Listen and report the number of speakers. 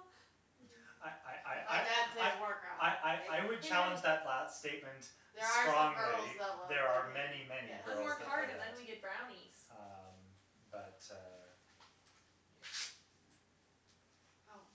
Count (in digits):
3